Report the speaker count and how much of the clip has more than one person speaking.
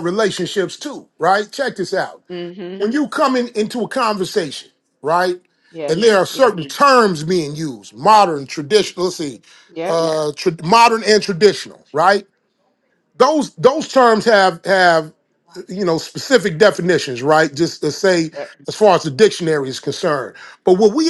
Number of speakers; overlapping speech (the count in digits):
2, about 1%